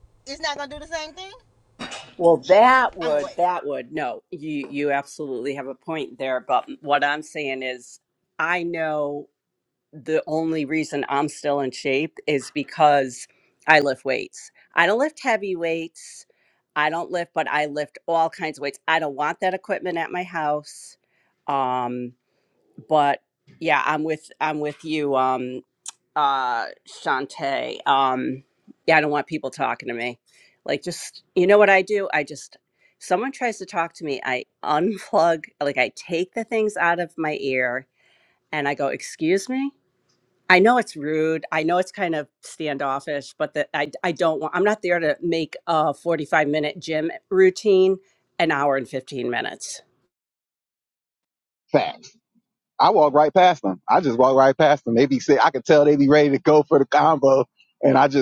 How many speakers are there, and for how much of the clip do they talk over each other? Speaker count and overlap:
3, about 1%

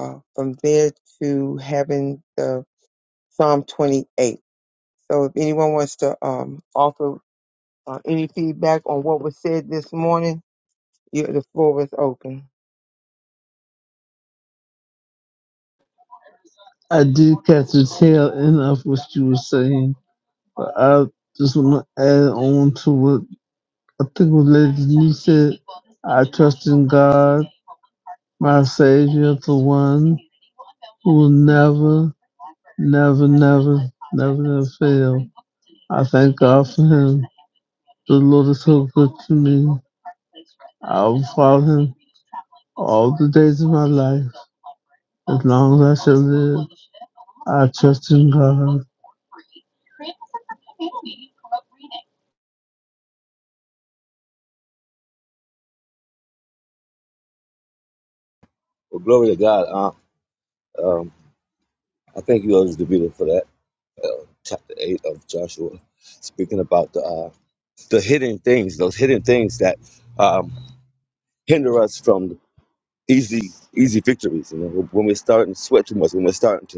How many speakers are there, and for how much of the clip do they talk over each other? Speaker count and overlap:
3, no overlap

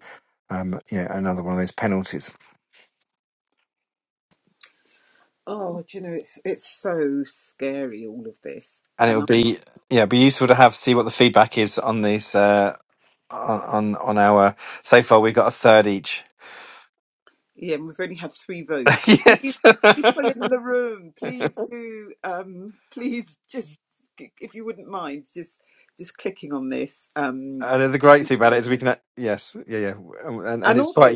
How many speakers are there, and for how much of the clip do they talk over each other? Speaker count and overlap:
2, about 4%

